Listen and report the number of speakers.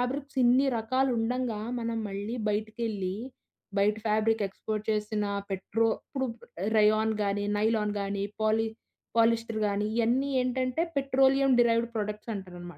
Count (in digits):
1